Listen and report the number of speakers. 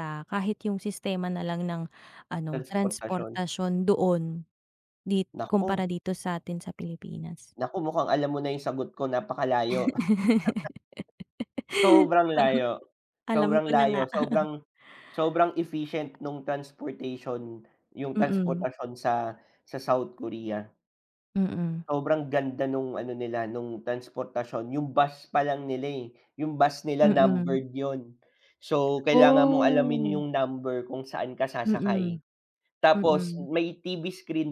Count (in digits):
2